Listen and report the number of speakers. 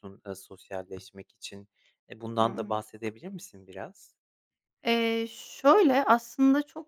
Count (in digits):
2